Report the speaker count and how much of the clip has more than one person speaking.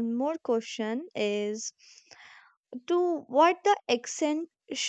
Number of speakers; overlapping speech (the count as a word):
one, no overlap